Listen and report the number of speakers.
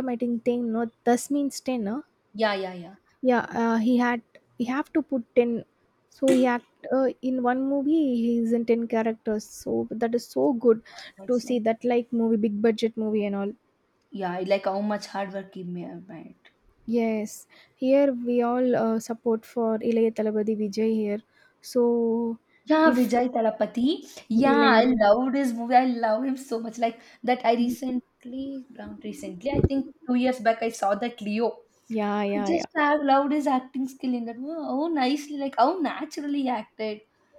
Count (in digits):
2